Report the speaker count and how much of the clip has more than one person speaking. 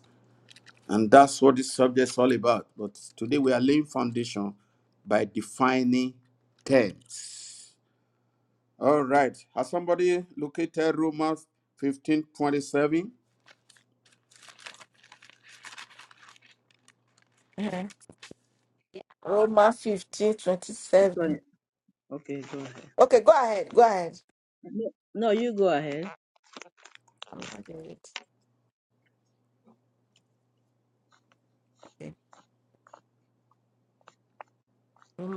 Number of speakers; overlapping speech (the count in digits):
3, about 1%